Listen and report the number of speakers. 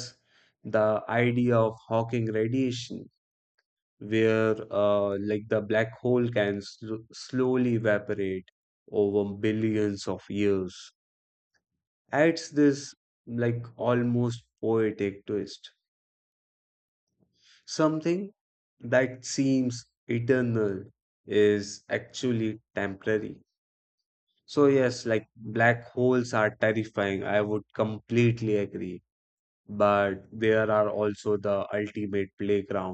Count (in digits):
1